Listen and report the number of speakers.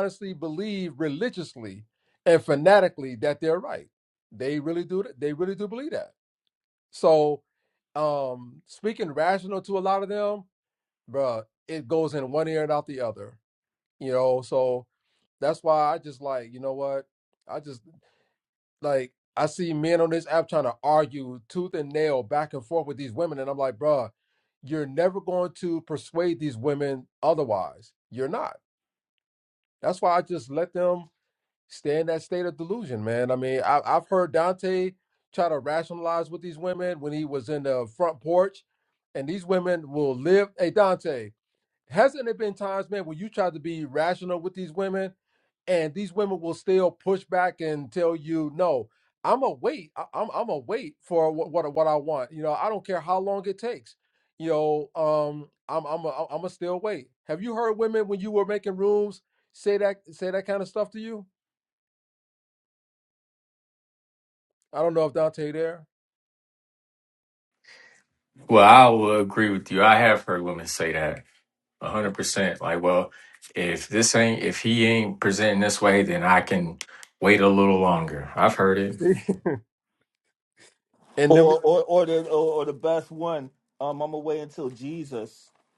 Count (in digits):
3